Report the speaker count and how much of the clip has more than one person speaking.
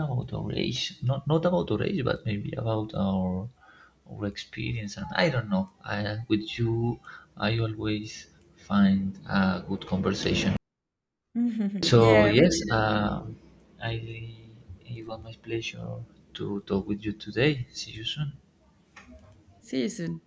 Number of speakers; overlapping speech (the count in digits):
2, about 4%